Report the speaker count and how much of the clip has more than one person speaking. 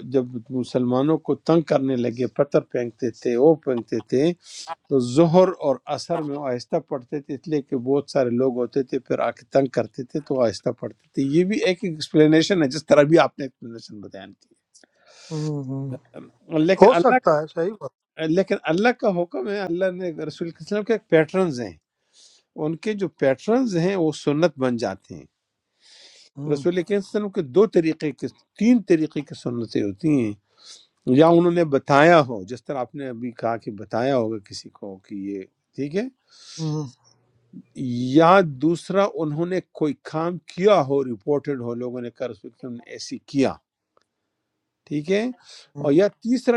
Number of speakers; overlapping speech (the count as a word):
two, about 2%